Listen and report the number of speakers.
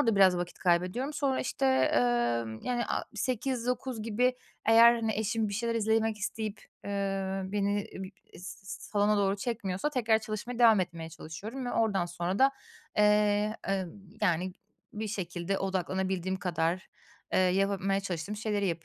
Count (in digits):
1